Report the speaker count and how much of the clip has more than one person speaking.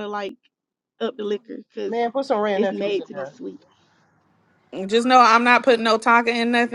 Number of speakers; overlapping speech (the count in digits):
3, about 12%